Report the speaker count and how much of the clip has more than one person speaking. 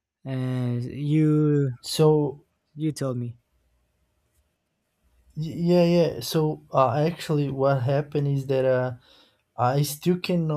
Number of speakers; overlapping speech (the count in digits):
2, no overlap